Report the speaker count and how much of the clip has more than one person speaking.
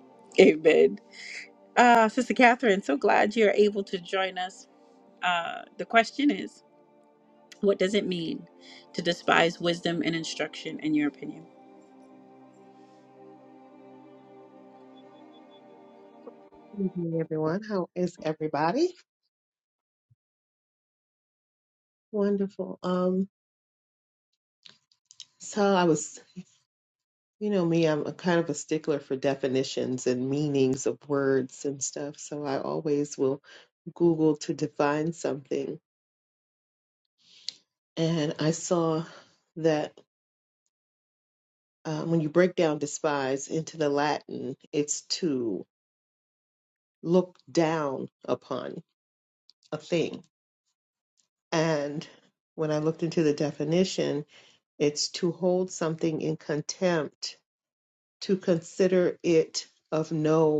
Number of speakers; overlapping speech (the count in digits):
2, no overlap